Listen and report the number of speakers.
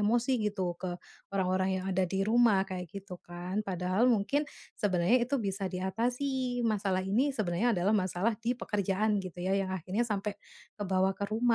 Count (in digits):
1